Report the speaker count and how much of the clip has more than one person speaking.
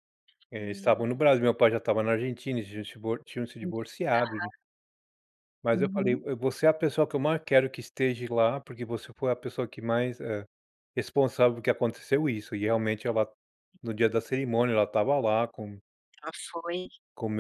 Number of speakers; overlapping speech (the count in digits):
2, about 6%